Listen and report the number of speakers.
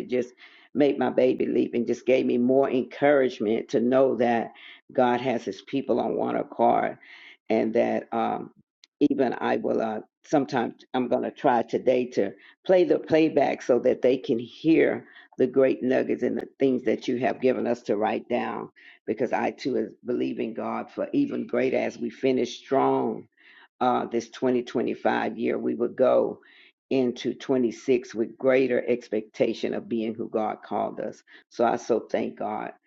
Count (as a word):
one